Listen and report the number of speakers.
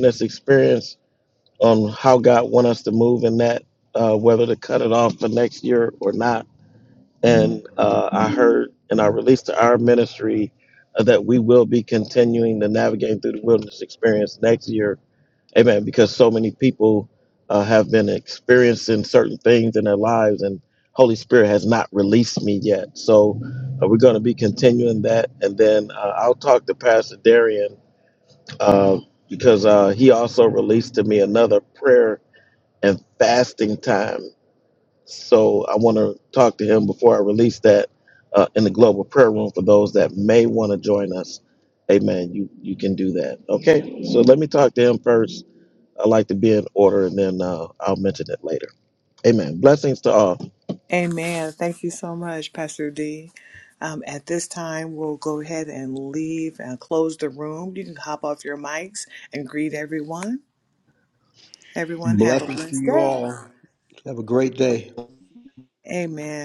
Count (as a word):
three